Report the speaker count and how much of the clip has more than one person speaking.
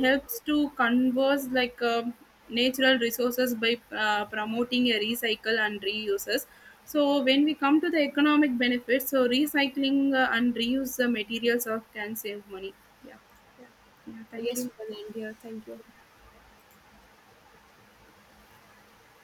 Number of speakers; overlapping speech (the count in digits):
2, about 2%